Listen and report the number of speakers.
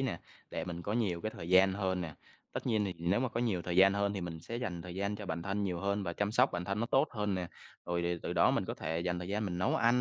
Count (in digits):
1